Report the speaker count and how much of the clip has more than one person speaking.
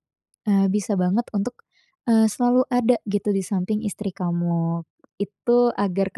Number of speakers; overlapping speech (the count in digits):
1, no overlap